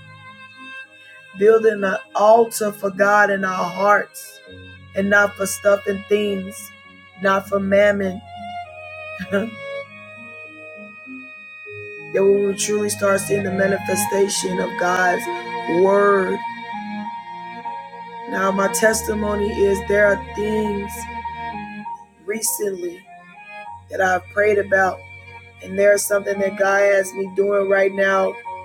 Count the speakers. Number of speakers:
1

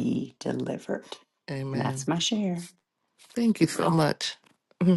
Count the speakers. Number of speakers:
2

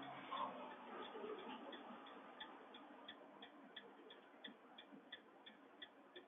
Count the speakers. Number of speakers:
0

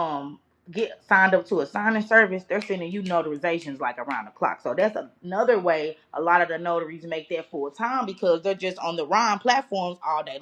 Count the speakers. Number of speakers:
1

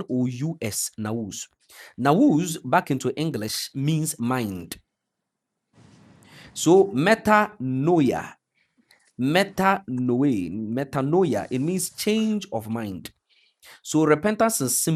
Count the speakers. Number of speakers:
1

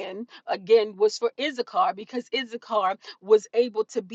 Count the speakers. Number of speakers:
1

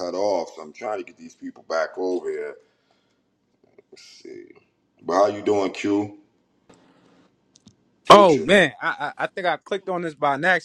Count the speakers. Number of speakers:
2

